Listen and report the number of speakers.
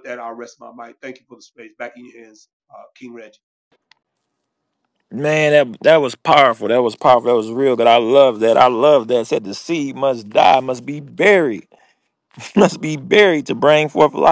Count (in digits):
2